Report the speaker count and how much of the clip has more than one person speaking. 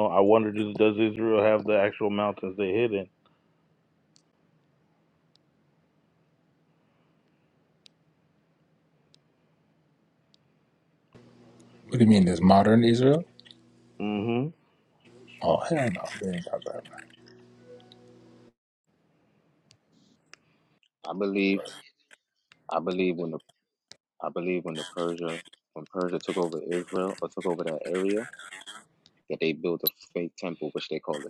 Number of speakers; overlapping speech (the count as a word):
three, no overlap